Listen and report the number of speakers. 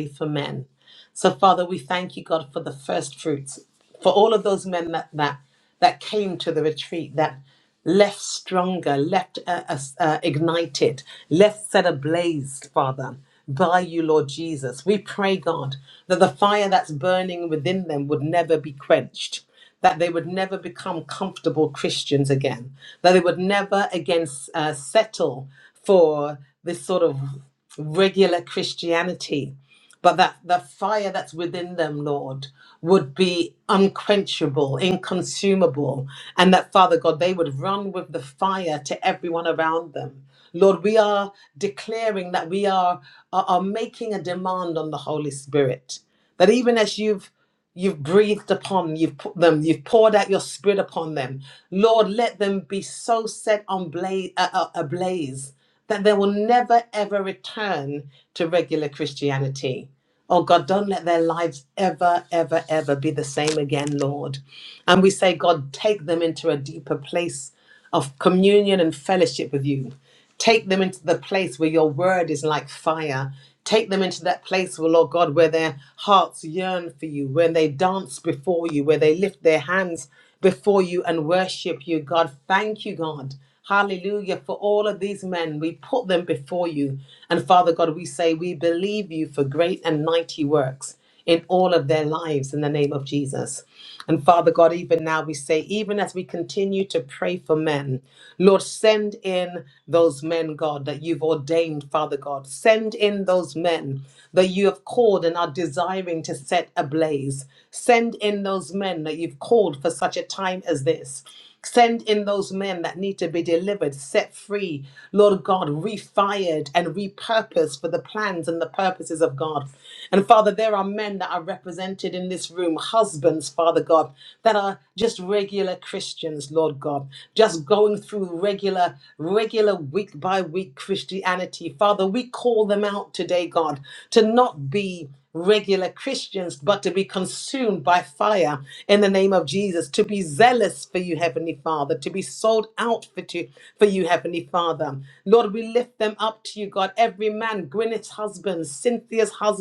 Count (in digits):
1